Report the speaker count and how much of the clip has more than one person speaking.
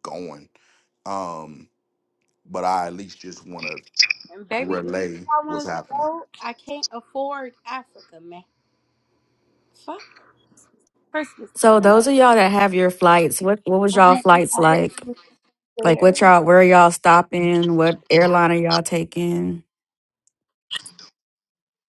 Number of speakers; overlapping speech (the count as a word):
three, about 9%